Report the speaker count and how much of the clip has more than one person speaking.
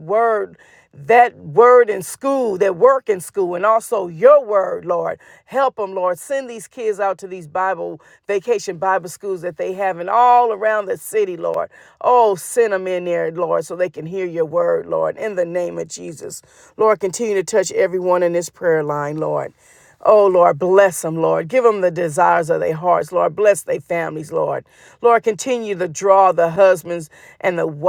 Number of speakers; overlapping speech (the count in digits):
1, no overlap